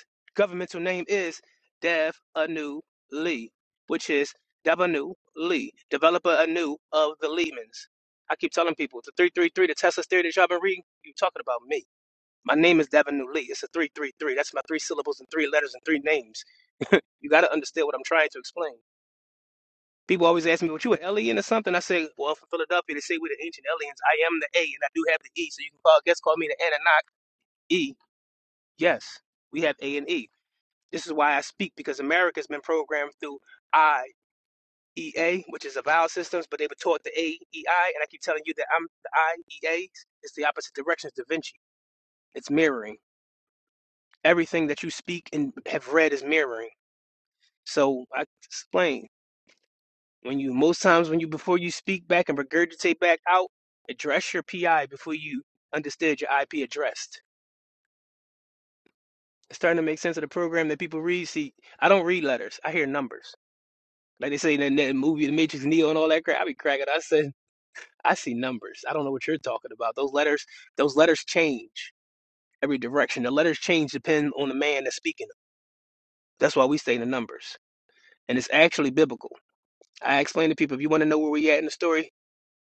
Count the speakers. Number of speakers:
one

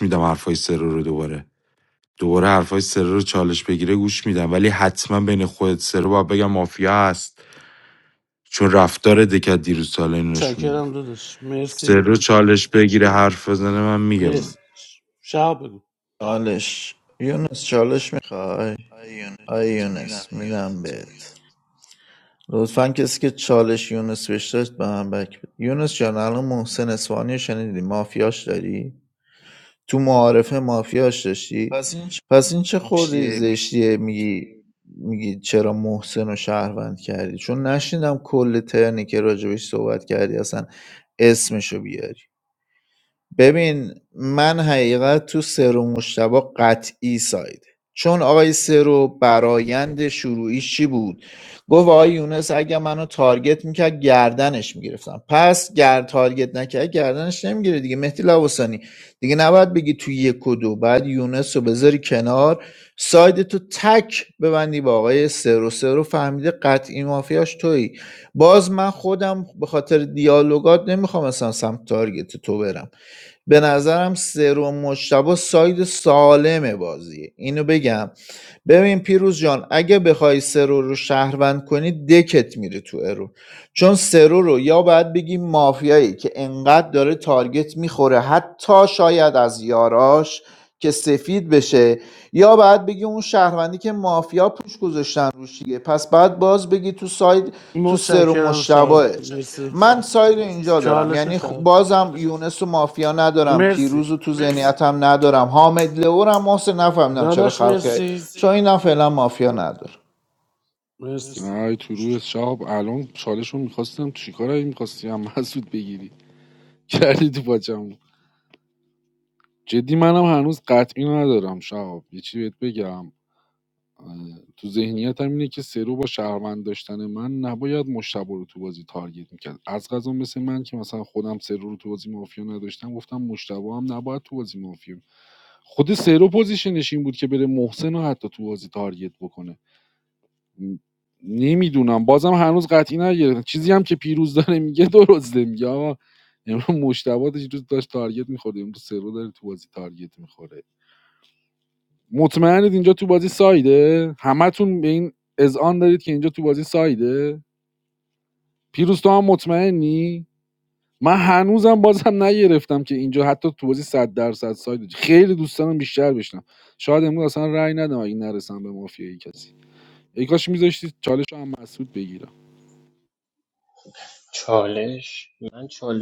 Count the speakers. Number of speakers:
five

